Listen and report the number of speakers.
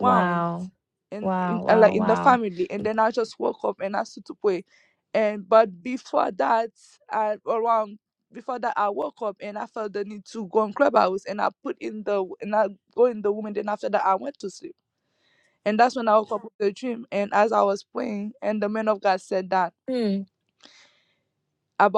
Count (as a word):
two